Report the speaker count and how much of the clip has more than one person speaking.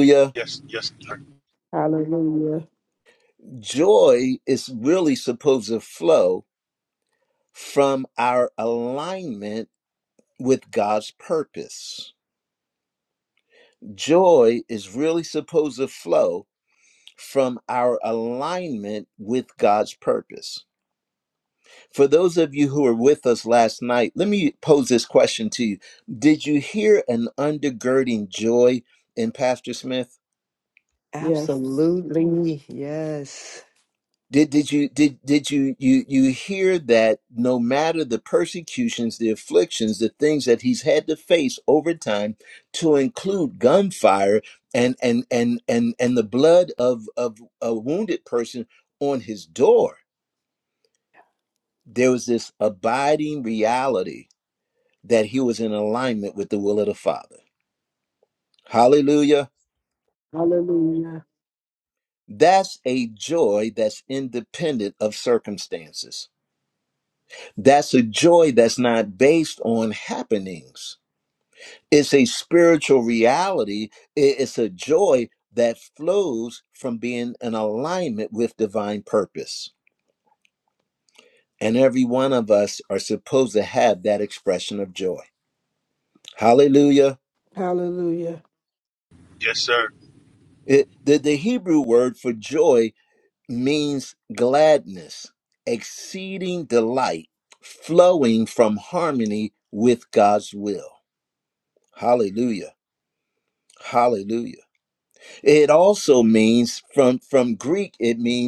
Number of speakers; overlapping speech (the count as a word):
four, under 1%